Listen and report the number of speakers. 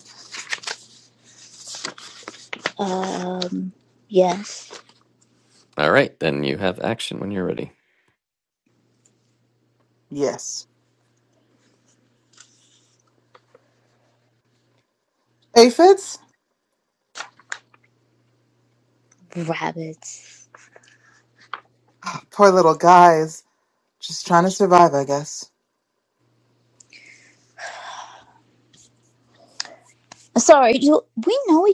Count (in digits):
3